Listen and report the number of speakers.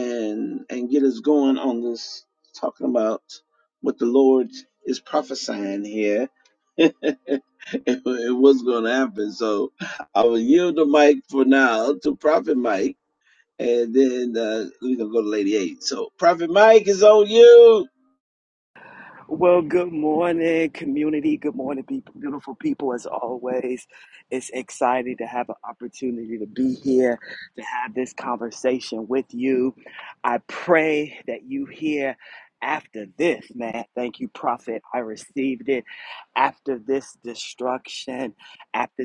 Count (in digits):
2